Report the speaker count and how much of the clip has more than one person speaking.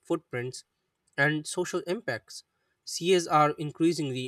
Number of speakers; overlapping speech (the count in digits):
1, no overlap